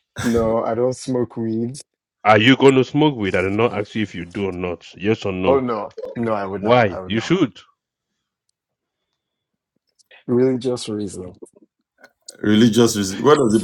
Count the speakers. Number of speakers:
3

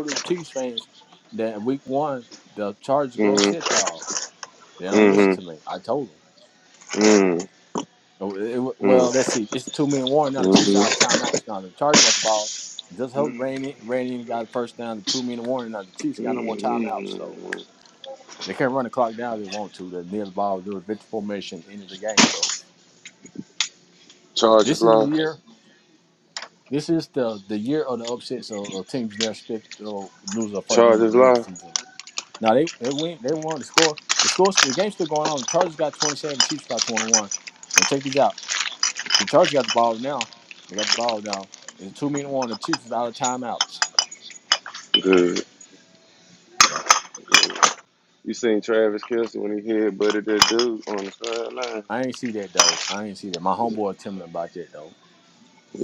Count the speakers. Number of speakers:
2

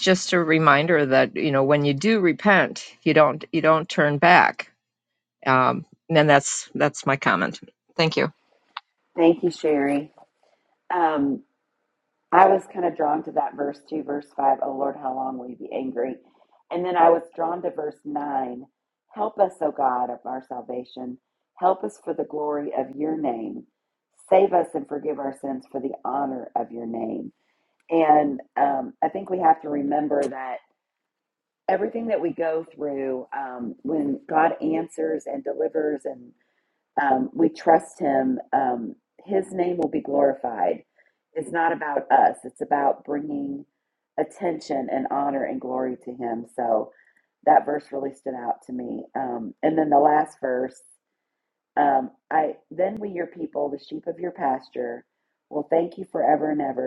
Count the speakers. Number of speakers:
2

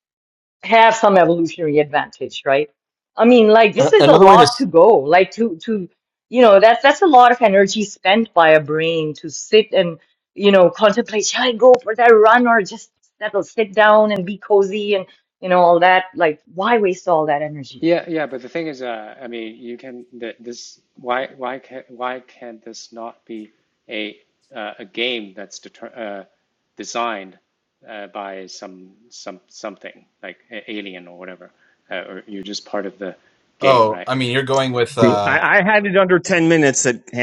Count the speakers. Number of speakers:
4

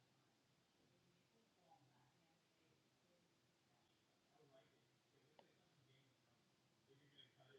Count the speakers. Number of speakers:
0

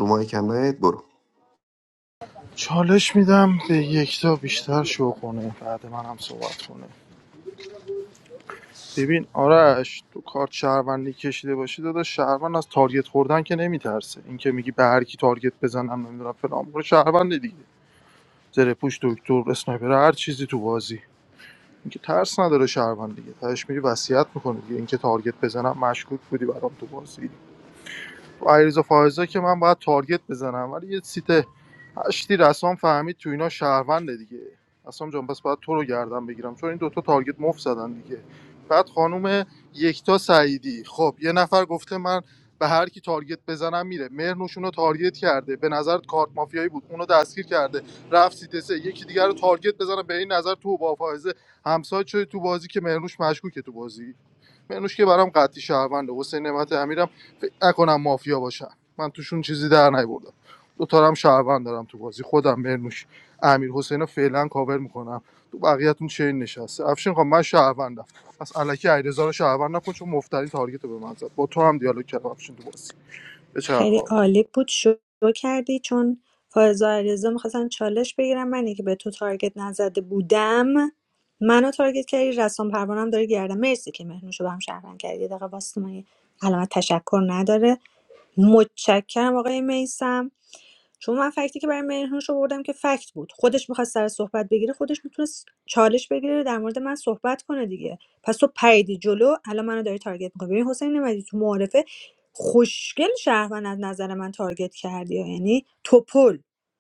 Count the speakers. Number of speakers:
3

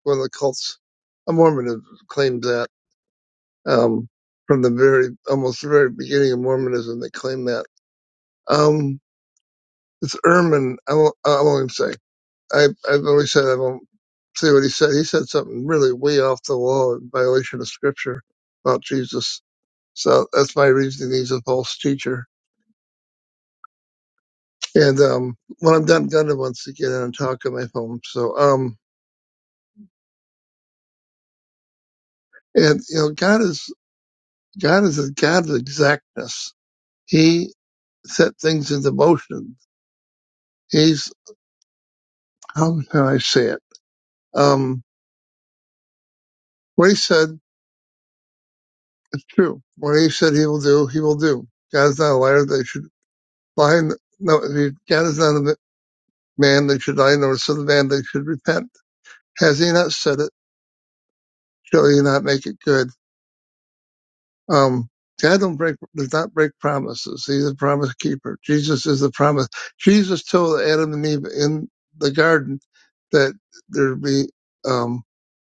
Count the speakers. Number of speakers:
1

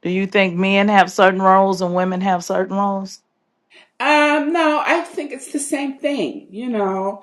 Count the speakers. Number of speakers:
2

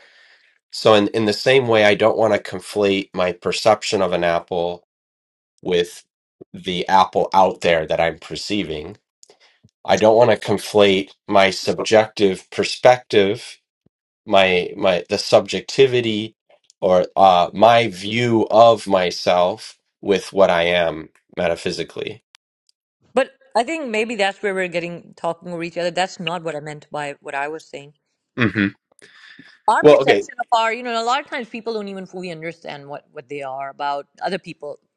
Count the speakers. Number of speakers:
2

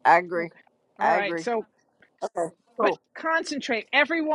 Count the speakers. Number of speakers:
2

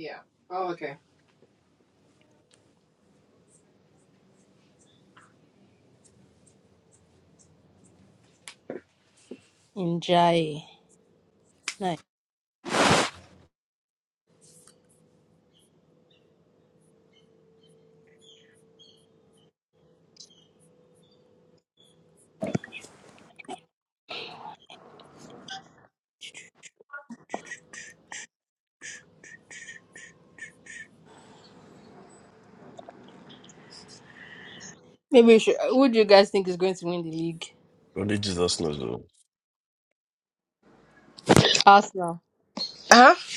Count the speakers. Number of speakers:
3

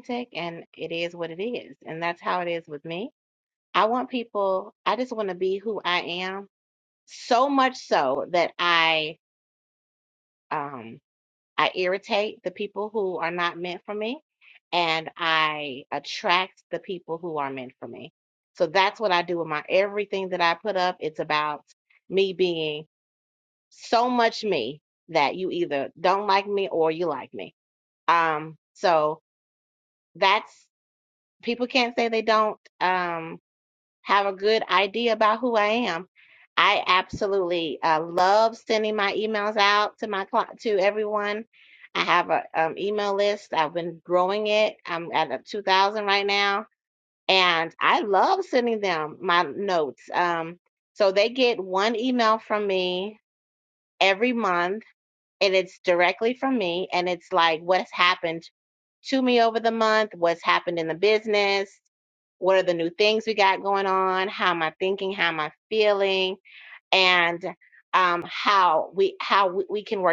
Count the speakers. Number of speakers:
1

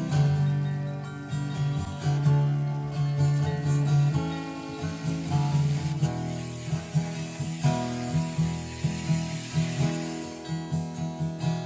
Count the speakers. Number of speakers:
0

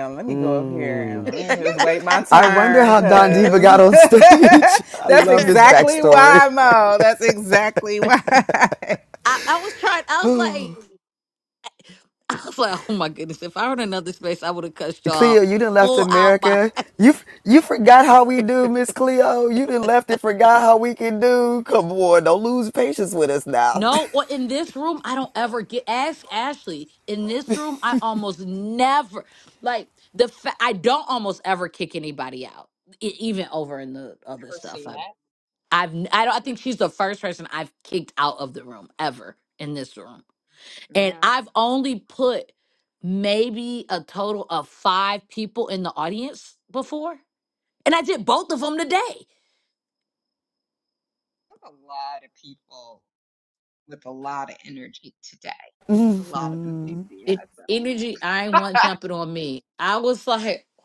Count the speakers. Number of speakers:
4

